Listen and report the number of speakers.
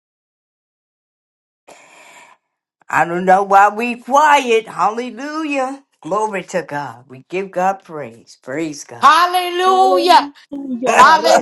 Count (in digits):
3